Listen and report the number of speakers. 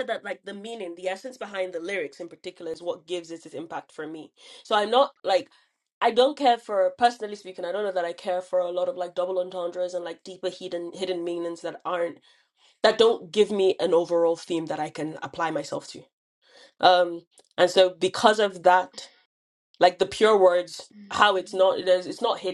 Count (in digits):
1